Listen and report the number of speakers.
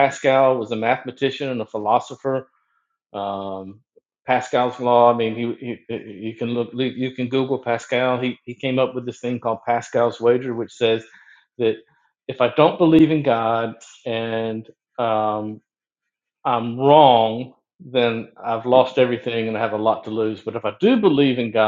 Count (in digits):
1